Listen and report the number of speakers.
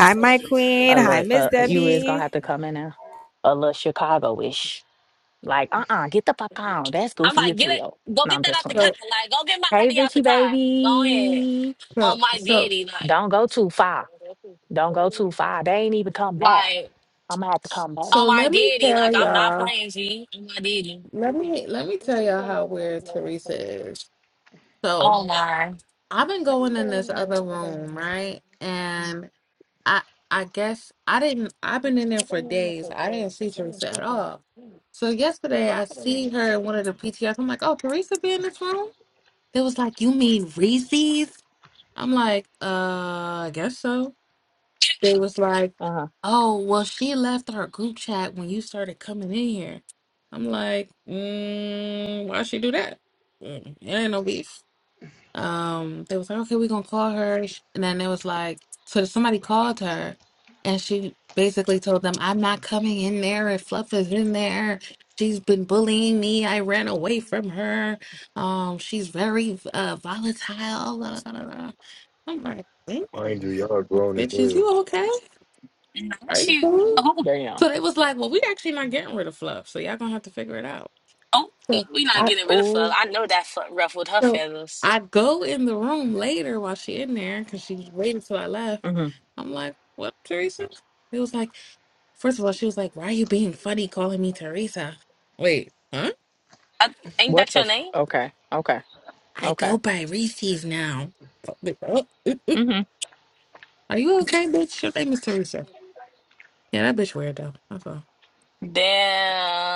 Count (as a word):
five